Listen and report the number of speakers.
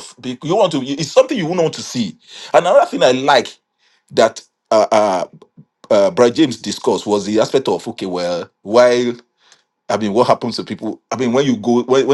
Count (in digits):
1